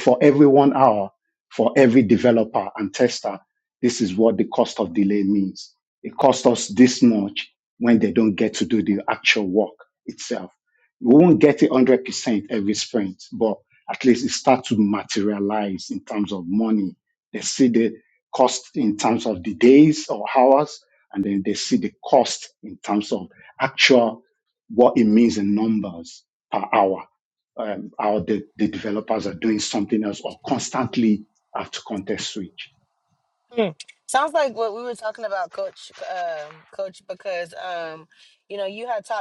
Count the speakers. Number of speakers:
two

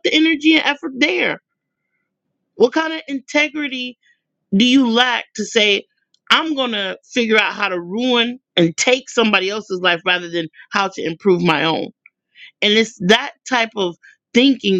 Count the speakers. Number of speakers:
one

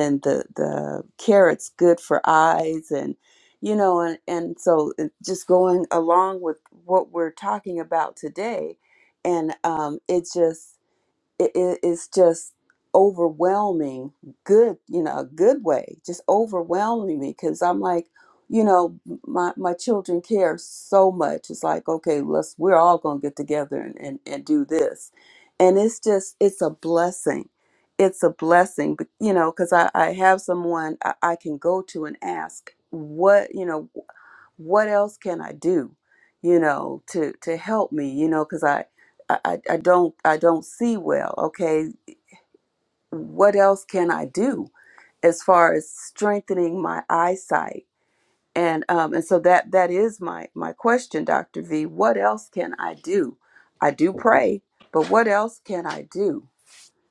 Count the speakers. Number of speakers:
one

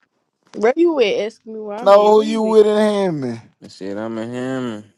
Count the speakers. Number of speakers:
three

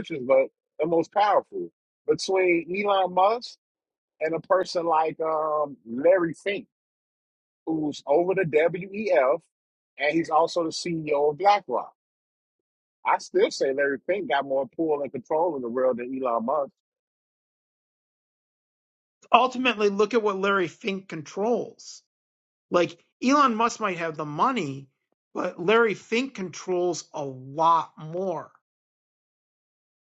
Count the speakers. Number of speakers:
two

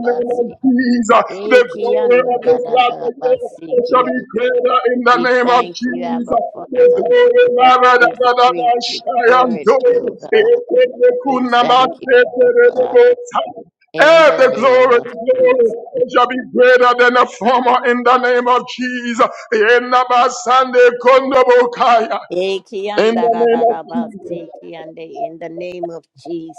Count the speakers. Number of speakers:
two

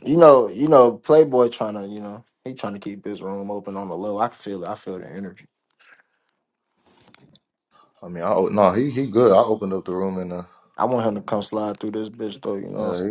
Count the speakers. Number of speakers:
two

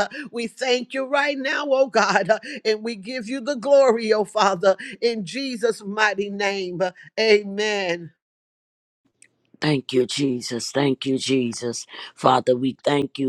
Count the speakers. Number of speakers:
two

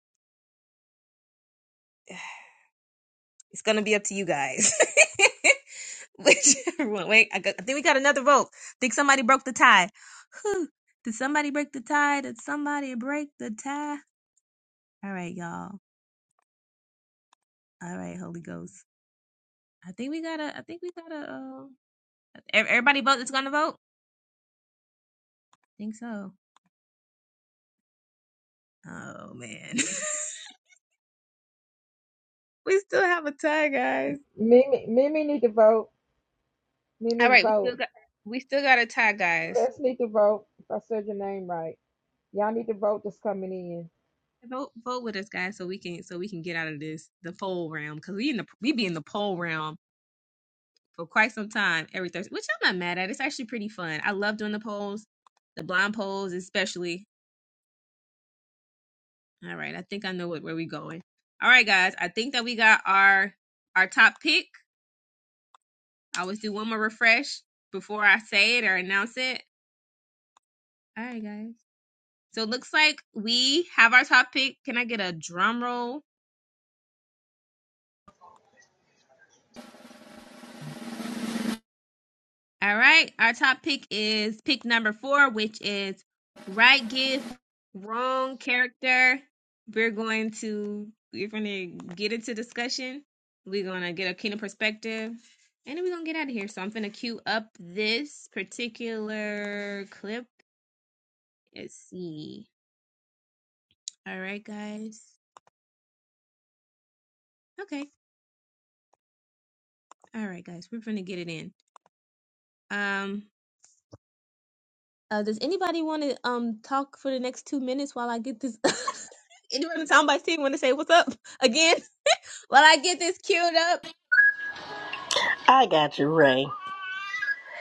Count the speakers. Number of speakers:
three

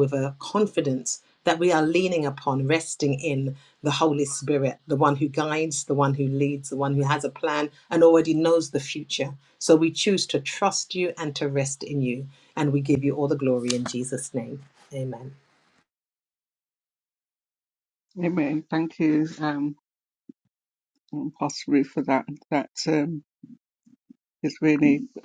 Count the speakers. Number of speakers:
two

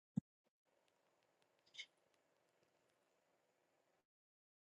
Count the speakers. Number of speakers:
zero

